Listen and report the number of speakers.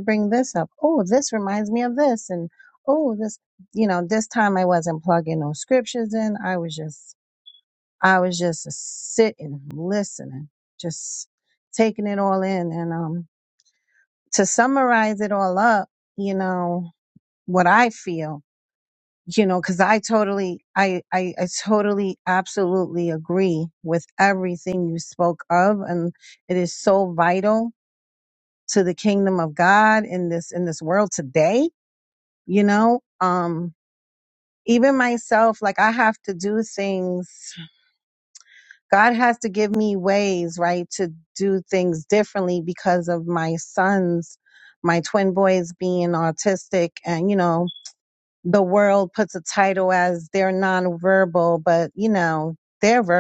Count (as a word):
one